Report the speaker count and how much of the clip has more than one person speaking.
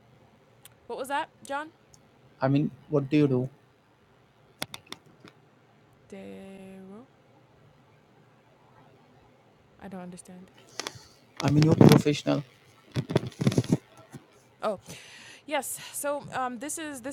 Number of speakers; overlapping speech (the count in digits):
2, no overlap